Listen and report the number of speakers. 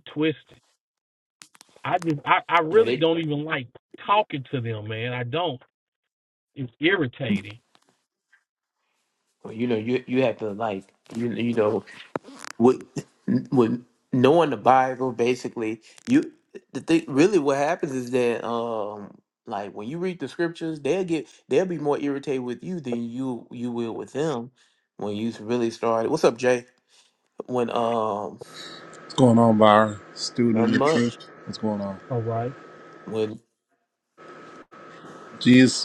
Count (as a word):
three